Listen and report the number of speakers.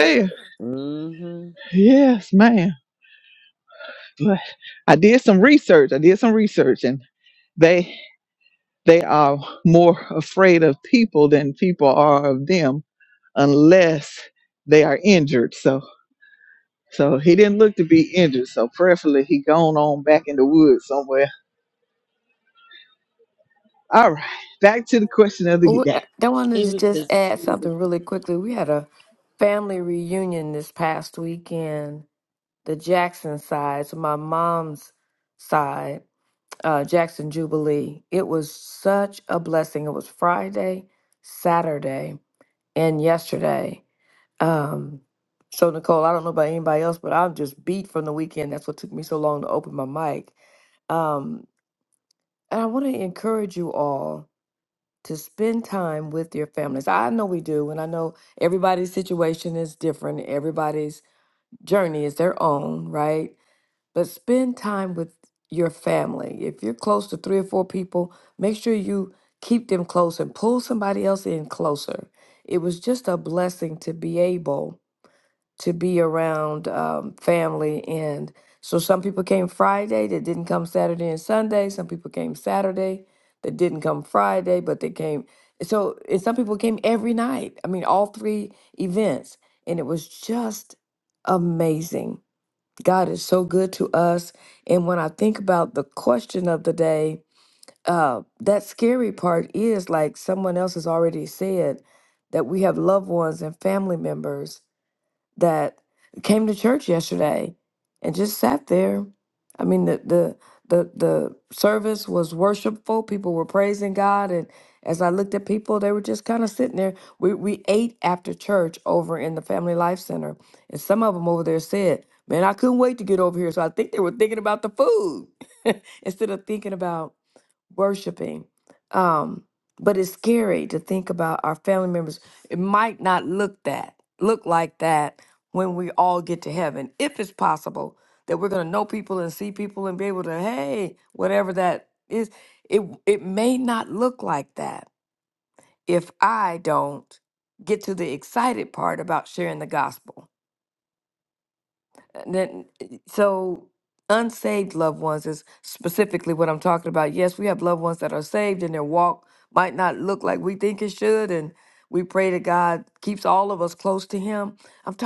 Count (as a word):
three